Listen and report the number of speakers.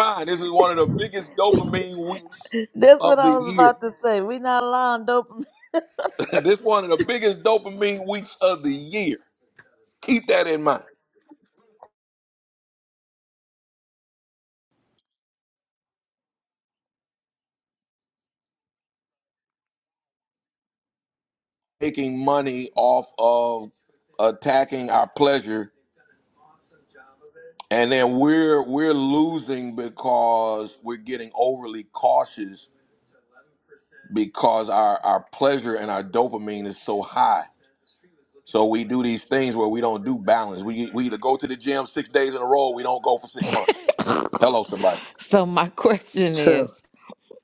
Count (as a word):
three